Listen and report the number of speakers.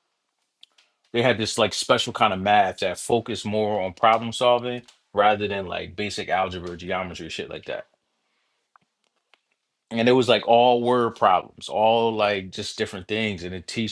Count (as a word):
one